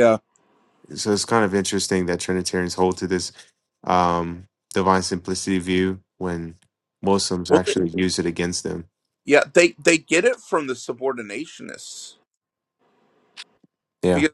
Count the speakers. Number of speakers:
2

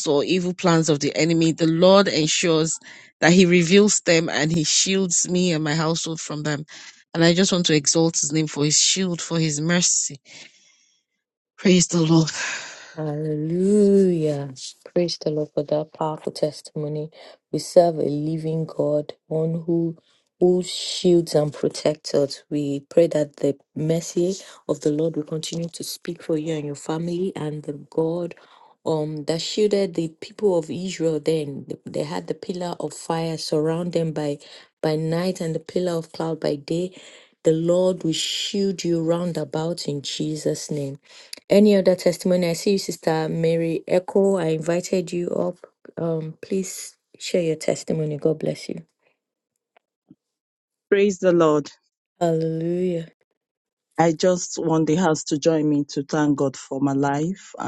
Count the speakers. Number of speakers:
3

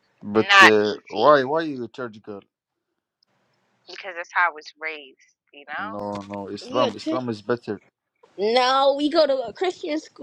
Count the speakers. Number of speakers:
3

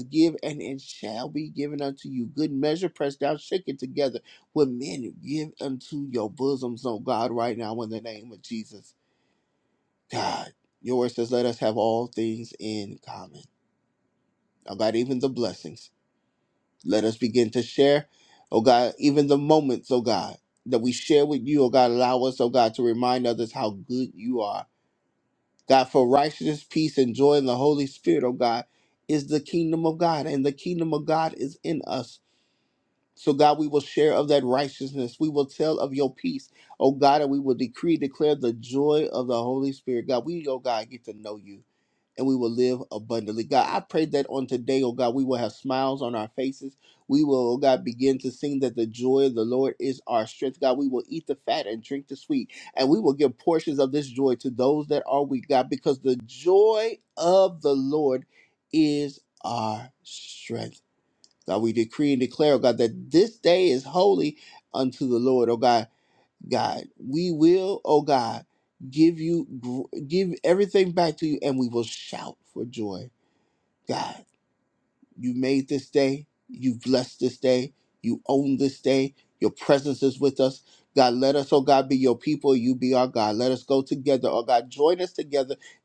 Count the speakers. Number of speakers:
1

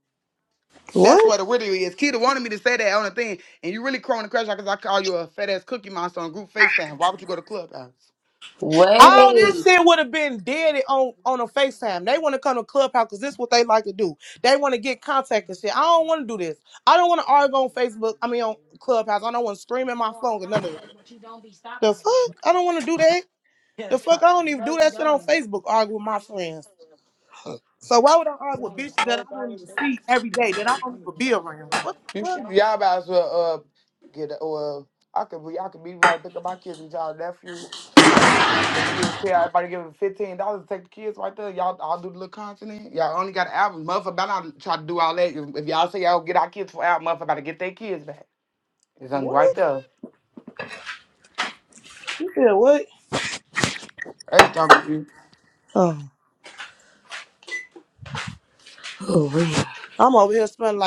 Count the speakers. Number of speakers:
3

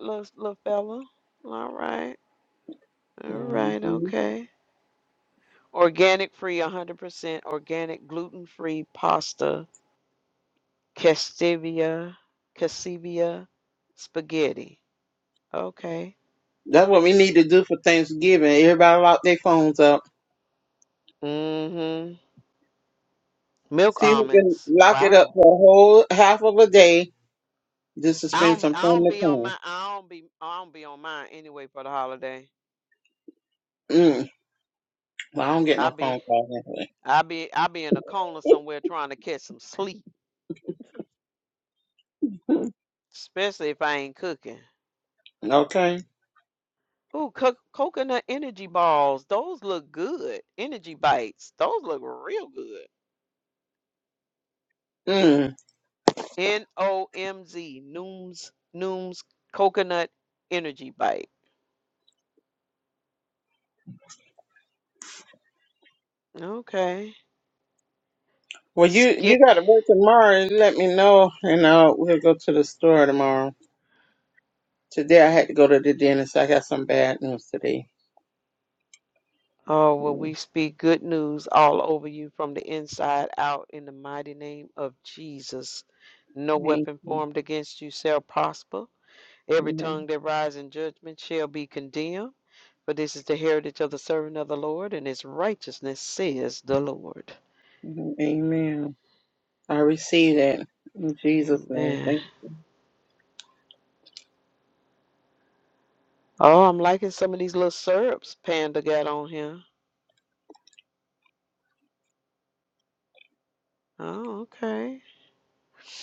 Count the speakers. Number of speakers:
2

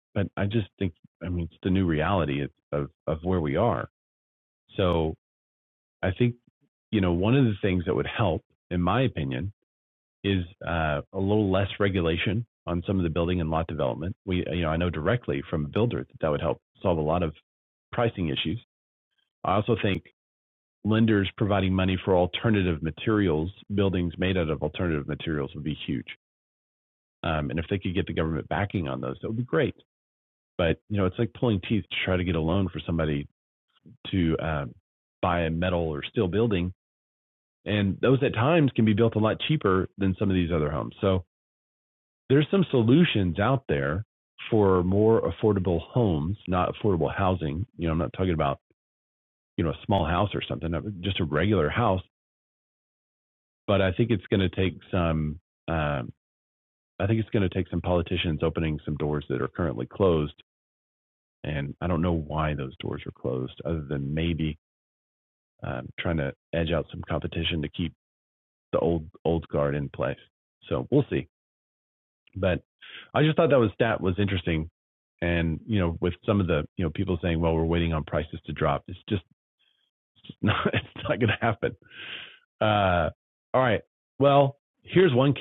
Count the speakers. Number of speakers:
1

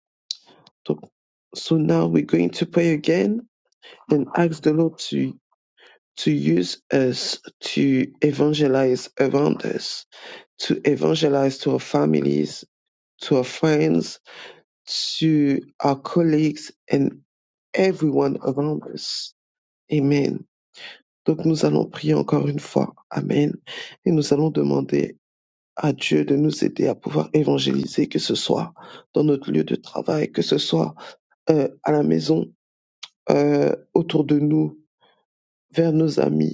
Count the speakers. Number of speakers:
1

